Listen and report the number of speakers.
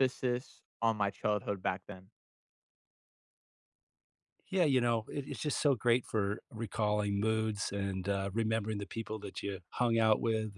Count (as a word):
two